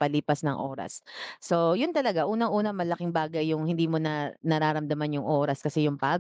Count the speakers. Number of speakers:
1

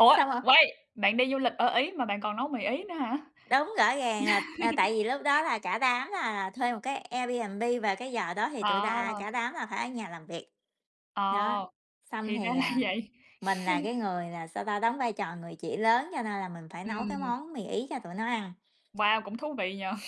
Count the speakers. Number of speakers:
2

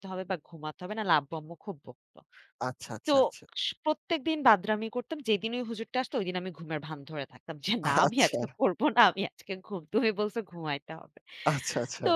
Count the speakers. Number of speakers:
2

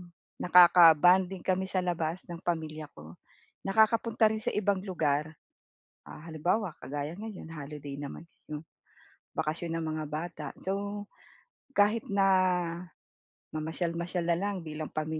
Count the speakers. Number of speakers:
1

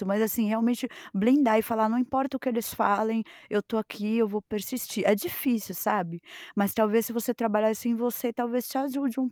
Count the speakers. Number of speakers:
1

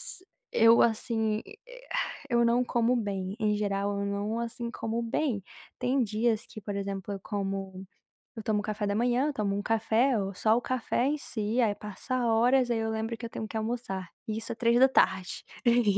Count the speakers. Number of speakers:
1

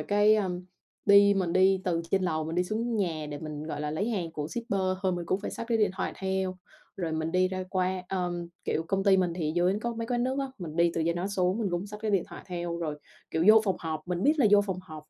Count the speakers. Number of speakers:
1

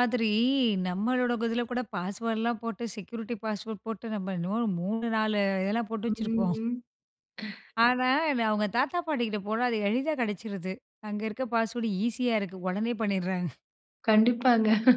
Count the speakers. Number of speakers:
2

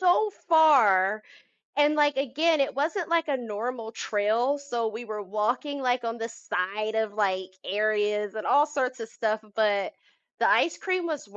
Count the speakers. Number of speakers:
1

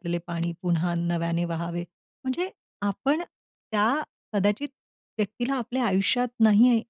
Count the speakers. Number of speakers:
1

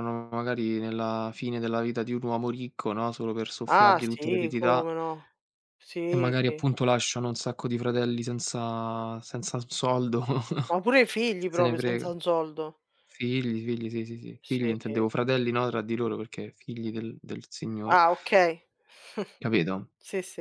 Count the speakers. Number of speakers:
2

